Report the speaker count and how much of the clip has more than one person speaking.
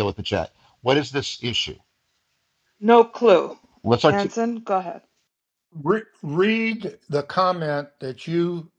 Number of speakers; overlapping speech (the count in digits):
3, about 3%